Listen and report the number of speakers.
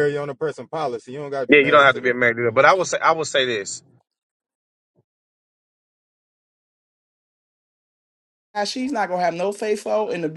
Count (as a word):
three